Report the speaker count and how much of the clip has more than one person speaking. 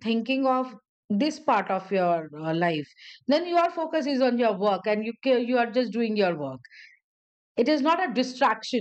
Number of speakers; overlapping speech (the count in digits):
1, no overlap